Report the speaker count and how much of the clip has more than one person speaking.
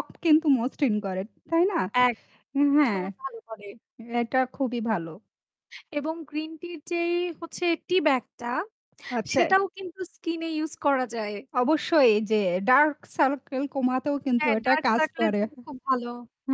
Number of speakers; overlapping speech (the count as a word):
two, about 9%